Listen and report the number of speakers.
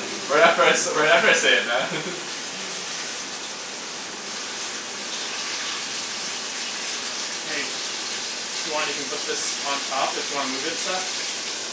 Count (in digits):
2